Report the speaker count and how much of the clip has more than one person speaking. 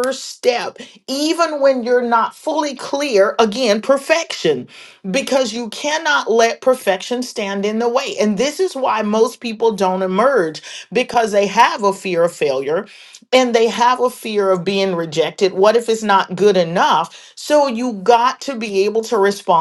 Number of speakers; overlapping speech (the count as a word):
one, no overlap